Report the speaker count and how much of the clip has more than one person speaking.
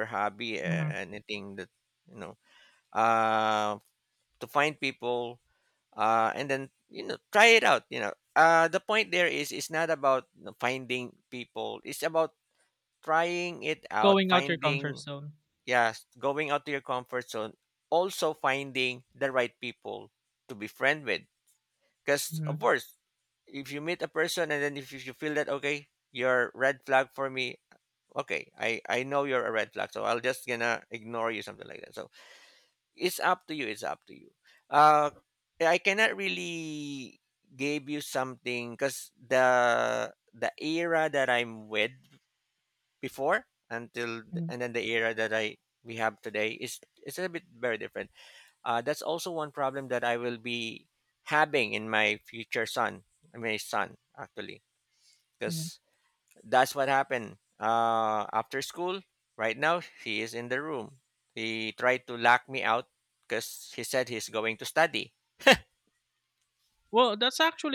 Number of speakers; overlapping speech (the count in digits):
2, about 3%